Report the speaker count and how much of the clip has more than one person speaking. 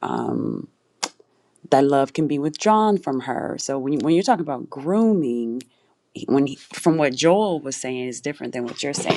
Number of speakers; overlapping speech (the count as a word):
one, no overlap